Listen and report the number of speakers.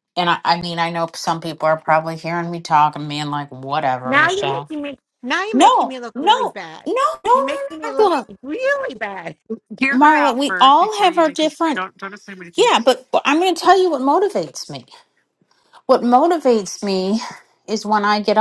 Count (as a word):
three